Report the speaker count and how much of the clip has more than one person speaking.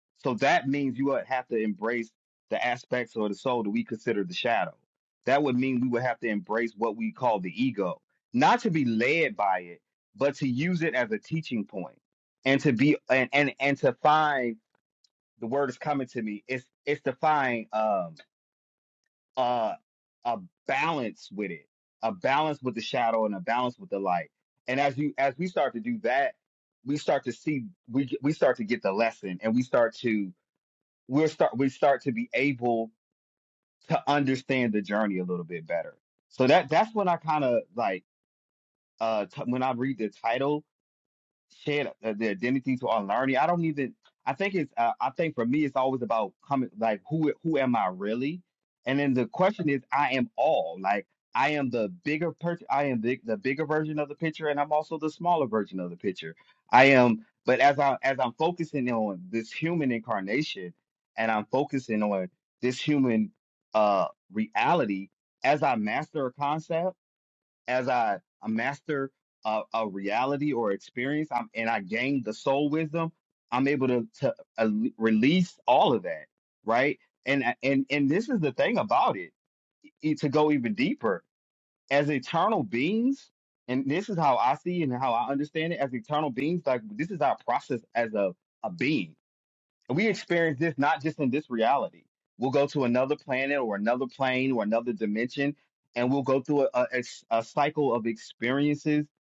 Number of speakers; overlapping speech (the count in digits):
1, no overlap